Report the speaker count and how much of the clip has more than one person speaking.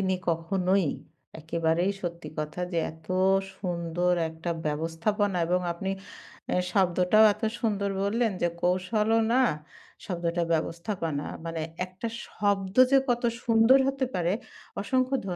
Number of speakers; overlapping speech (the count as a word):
one, no overlap